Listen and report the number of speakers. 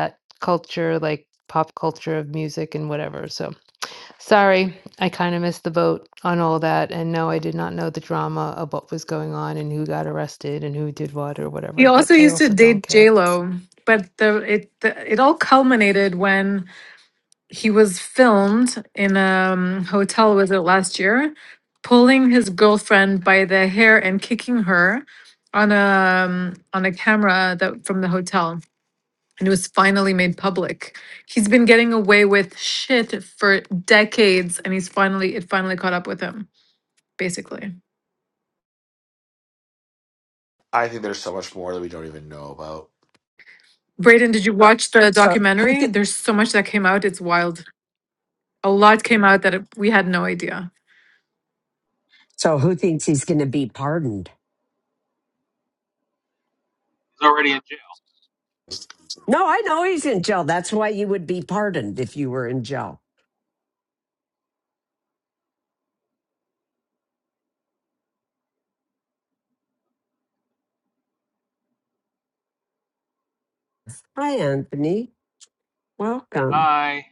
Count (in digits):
5